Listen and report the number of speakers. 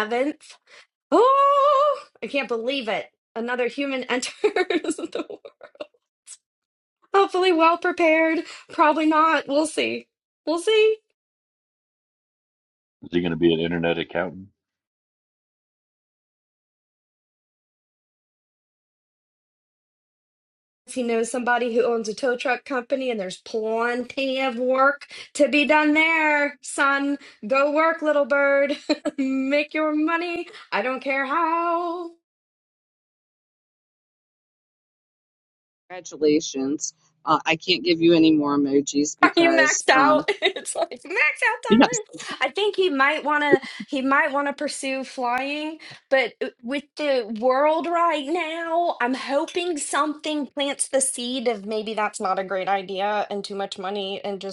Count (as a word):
three